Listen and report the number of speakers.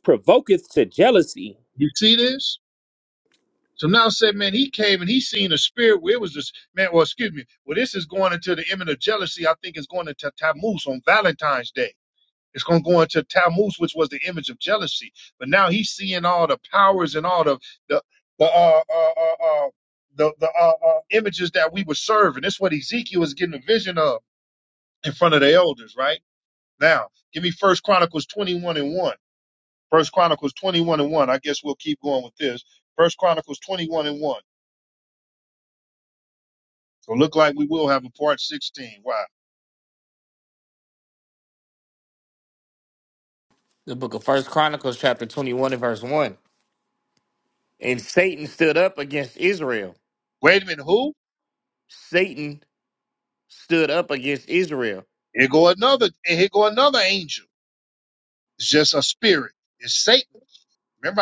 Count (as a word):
three